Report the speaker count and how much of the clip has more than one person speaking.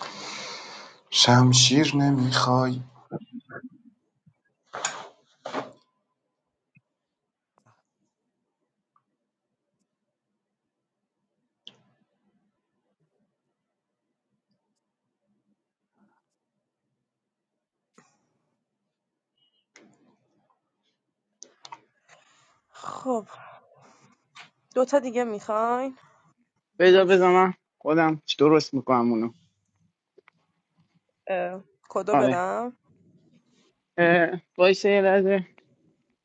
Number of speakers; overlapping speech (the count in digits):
3, about 1%